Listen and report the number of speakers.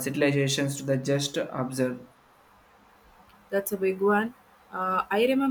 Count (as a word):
two